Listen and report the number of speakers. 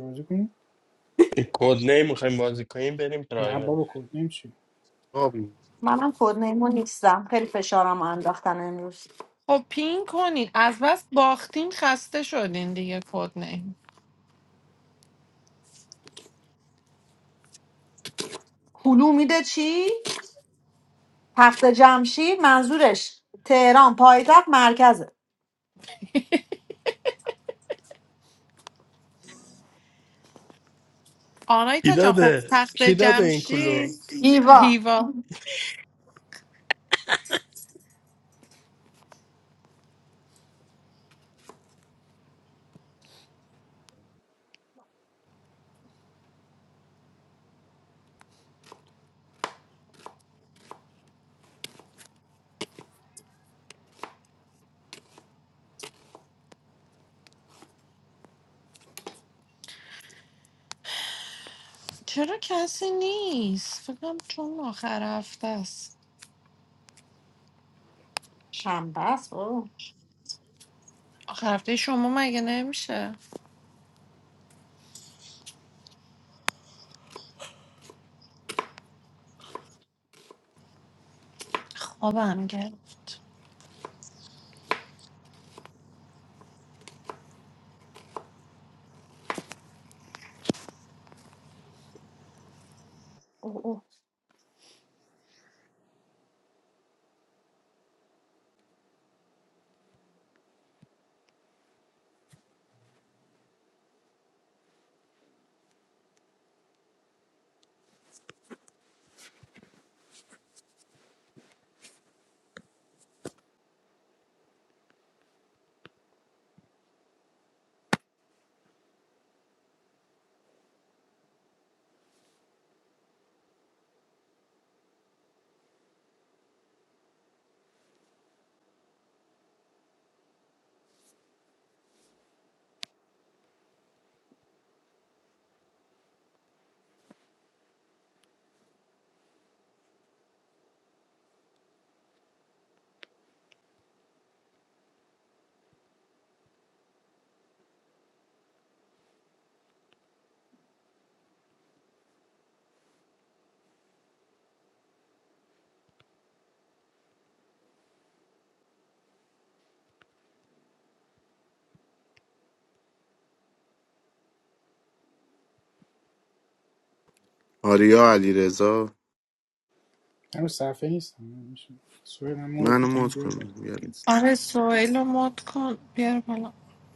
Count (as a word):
five